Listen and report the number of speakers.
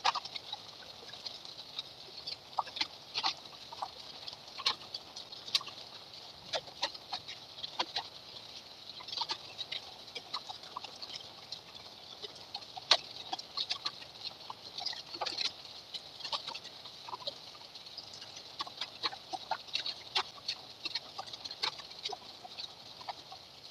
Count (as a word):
zero